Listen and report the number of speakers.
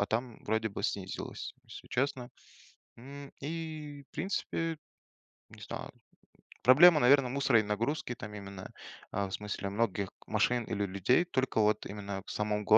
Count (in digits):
1